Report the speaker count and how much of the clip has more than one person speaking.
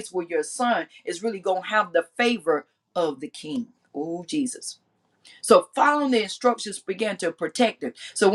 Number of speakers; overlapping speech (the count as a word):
one, no overlap